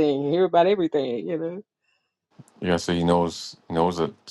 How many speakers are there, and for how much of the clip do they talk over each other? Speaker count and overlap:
2, no overlap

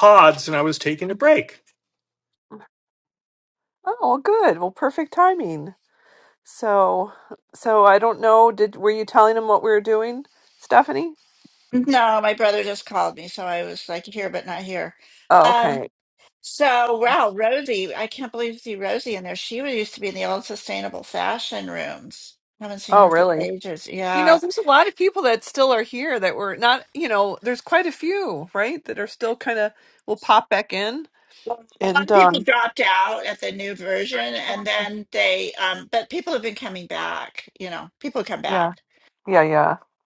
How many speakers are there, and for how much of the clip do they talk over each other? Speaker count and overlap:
3, about 5%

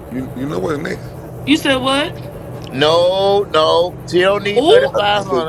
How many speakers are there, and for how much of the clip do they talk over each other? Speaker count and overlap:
3, about 17%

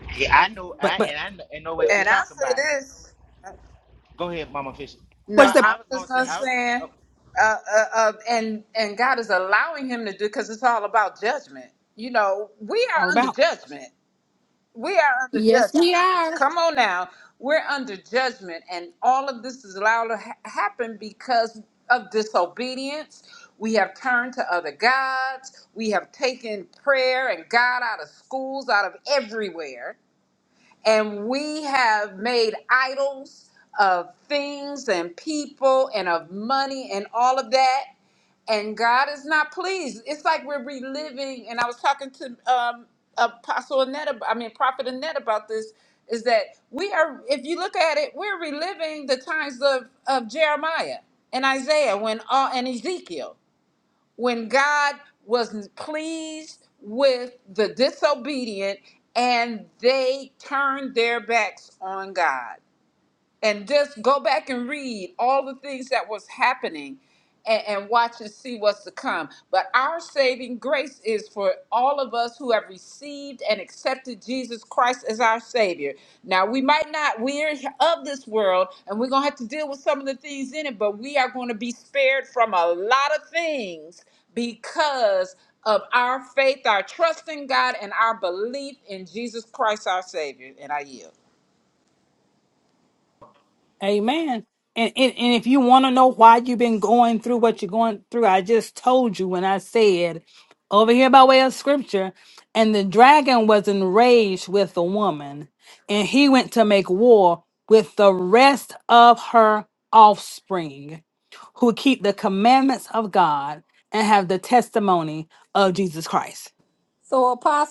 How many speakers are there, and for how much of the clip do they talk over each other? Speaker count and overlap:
4, about 3%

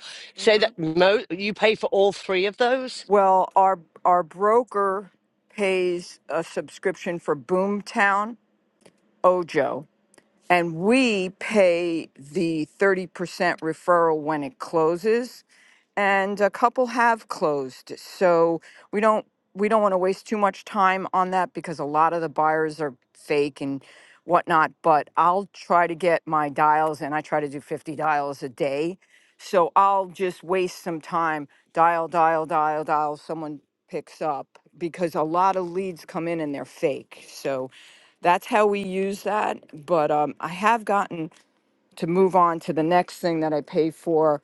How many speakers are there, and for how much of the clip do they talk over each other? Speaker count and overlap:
2, no overlap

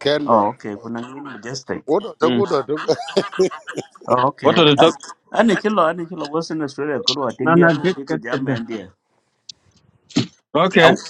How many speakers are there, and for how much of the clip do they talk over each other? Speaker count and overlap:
3, about 17%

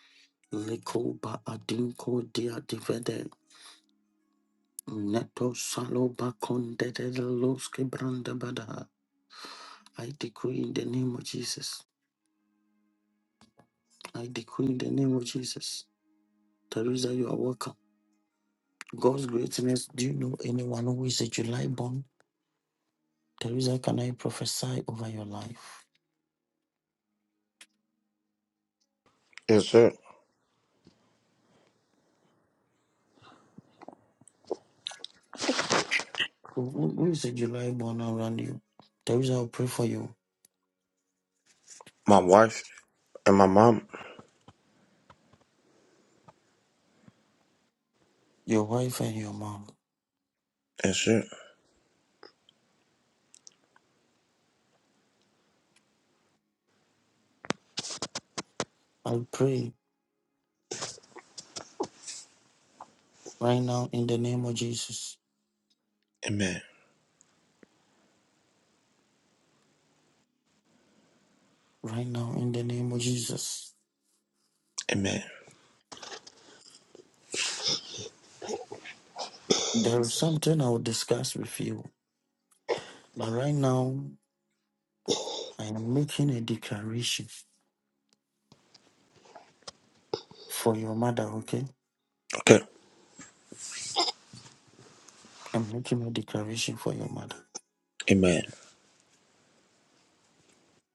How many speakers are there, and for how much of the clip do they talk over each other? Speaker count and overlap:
2, no overlap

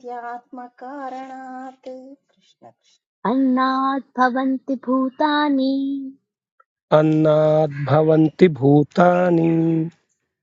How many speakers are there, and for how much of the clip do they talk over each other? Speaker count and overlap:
3, no overlap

